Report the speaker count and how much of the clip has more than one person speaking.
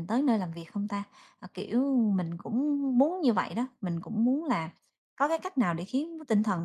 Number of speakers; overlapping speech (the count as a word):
one, no overlap